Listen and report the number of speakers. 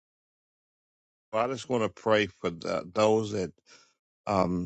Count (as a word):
one